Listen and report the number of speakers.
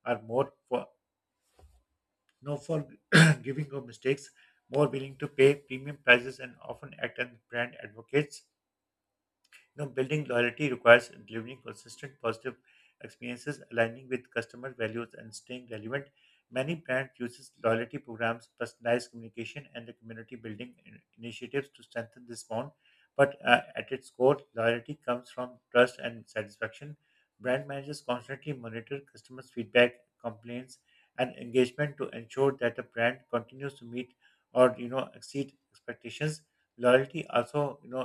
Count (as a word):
one